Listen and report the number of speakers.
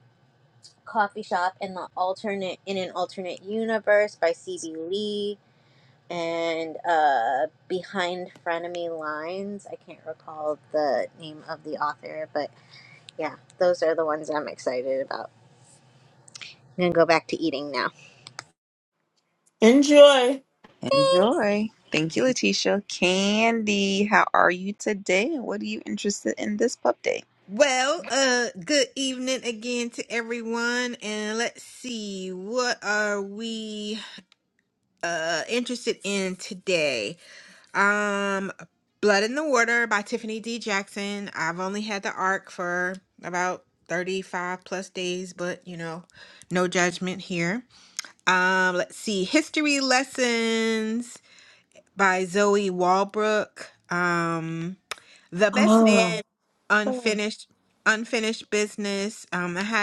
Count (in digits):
4